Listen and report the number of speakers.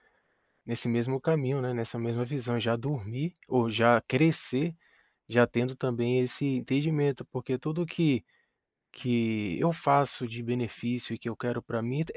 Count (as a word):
one